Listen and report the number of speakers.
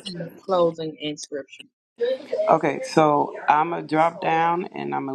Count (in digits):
2